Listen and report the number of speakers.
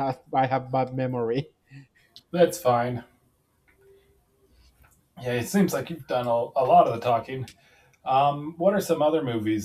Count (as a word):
two